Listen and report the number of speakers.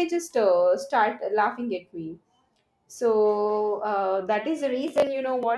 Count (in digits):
1